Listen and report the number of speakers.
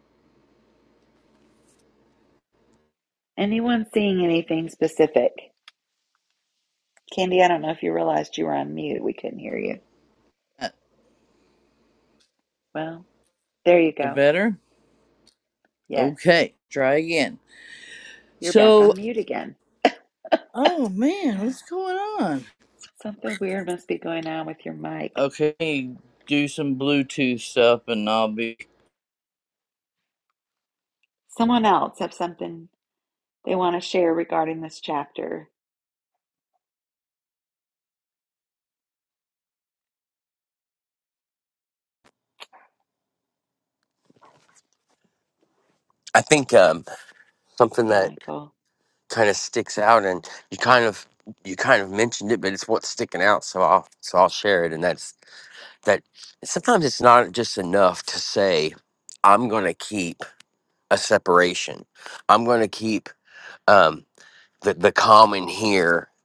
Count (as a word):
three